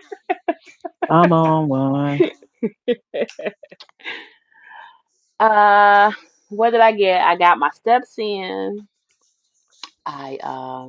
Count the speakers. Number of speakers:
two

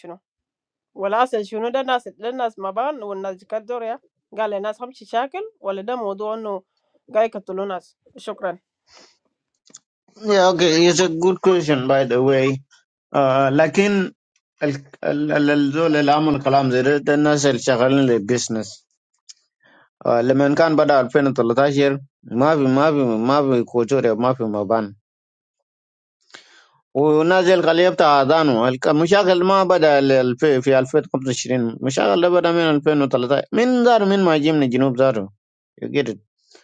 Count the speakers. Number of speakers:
two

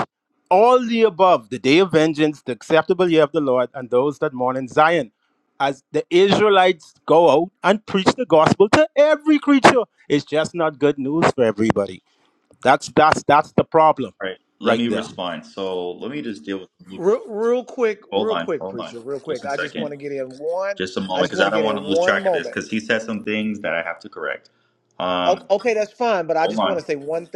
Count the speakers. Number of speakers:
three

